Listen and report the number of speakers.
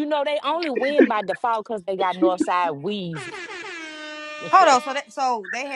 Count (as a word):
two